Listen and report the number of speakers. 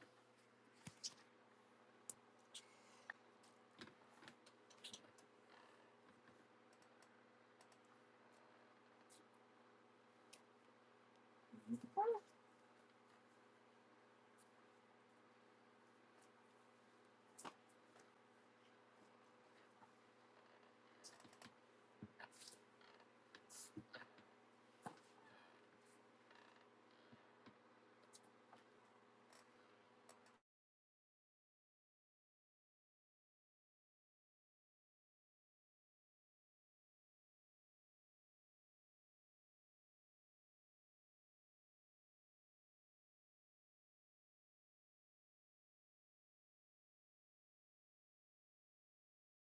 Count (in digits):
0